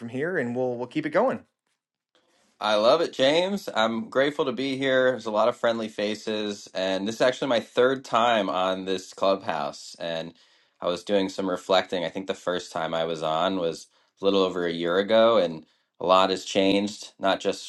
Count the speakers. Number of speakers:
two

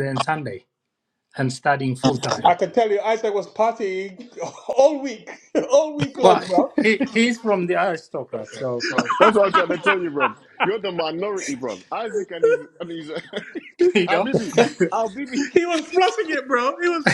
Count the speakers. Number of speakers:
three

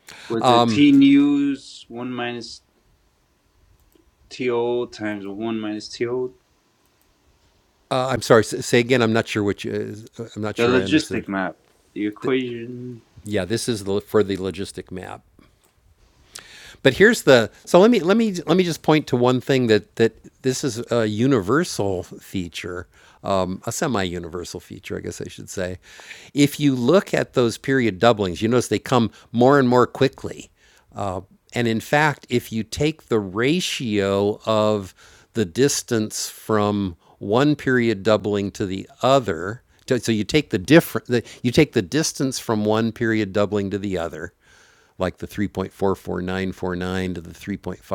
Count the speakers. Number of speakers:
two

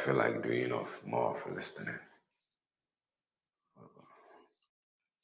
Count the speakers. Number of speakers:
one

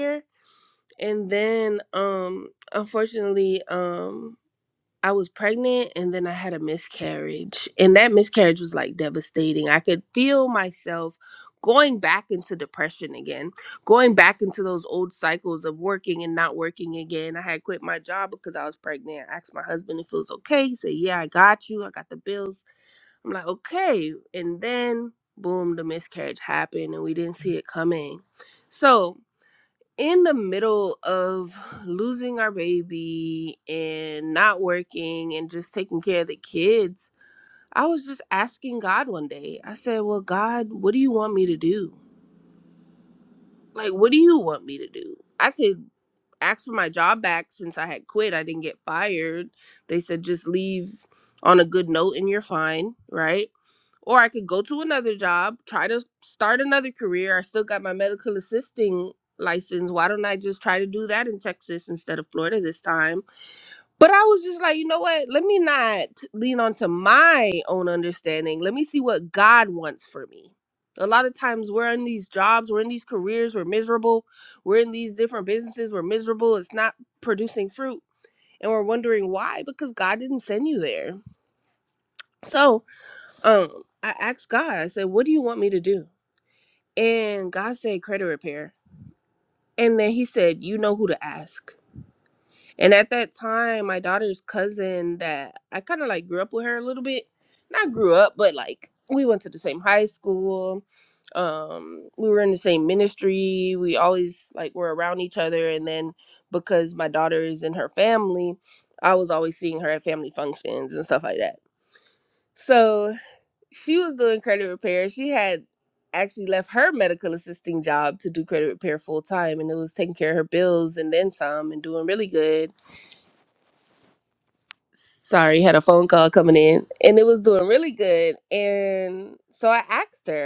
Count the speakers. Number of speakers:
one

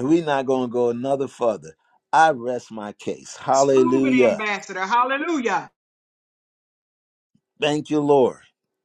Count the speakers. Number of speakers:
two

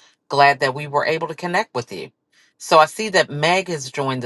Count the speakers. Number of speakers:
one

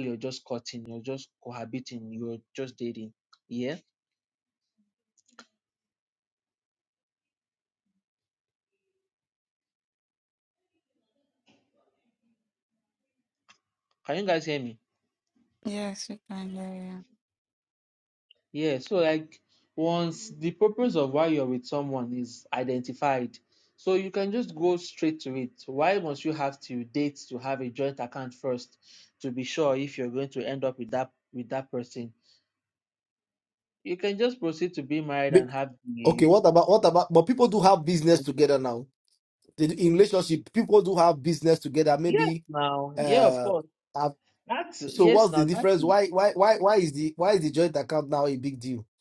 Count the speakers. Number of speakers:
three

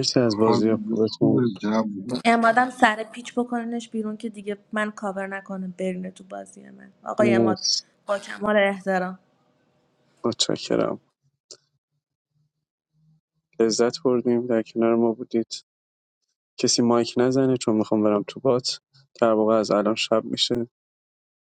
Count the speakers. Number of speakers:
three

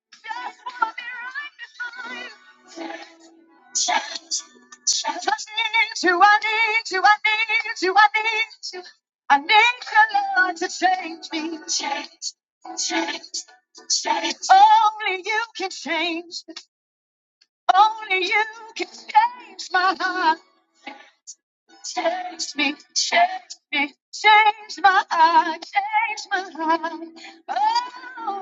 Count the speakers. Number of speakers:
one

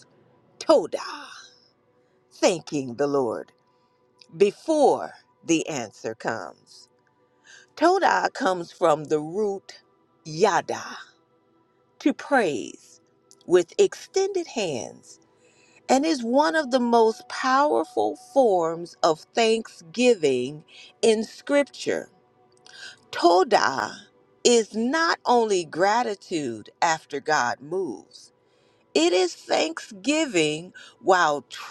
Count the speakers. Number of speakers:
one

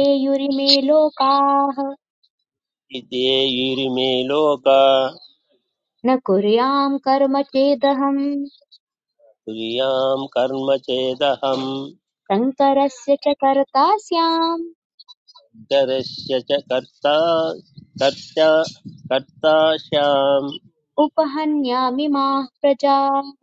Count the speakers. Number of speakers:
two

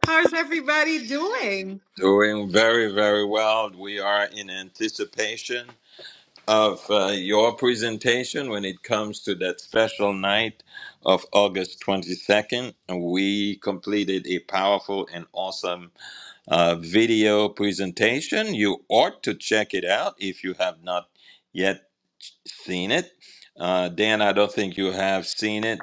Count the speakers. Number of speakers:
two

